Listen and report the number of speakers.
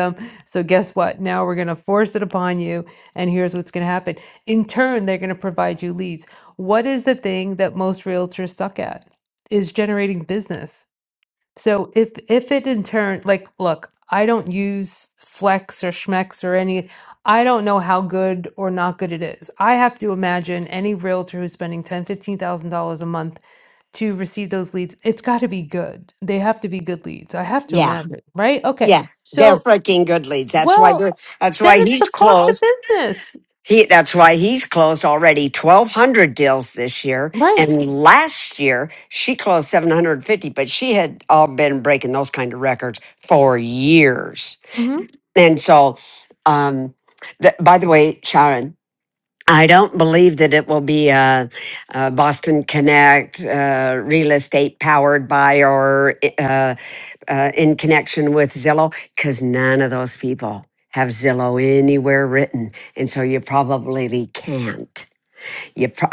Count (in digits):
2